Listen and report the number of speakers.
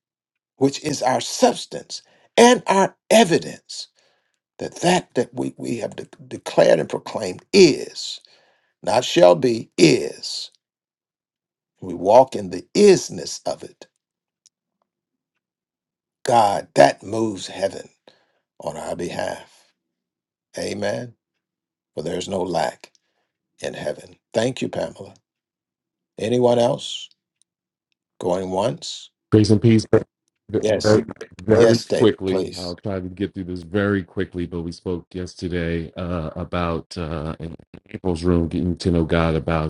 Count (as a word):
two